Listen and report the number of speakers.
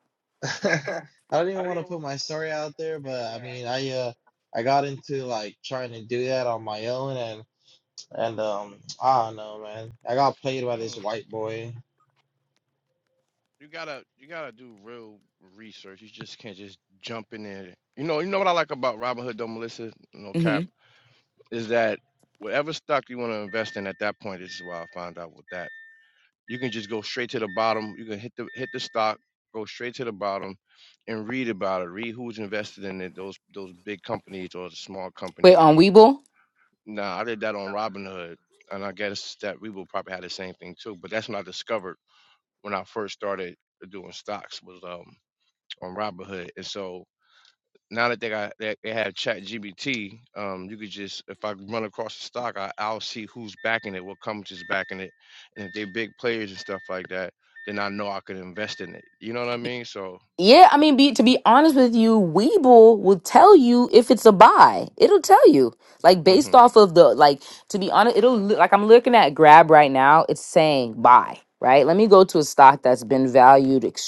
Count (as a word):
three